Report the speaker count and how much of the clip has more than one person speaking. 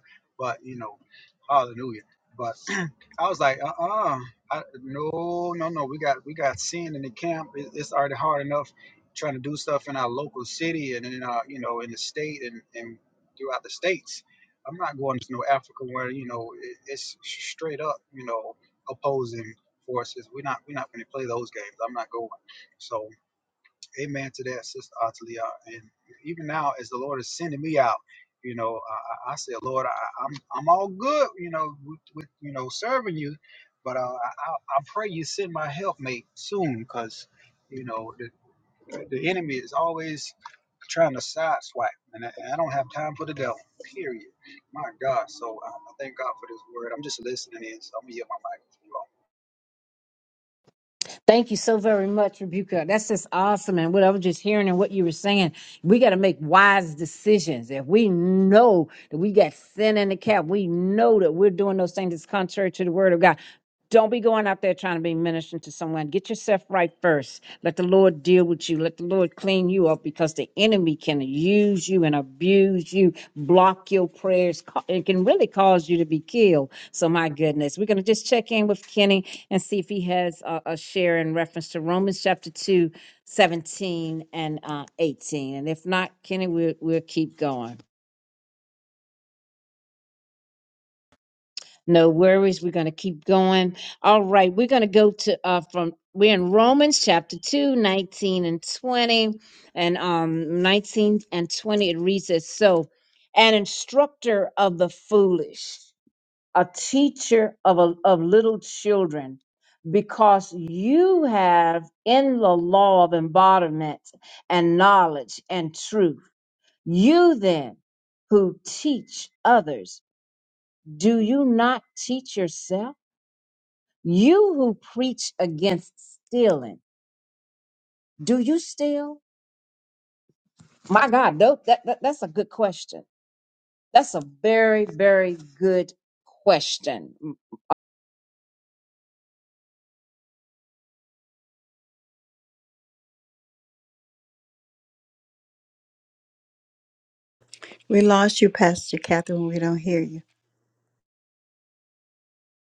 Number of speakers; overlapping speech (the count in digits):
3, no overlap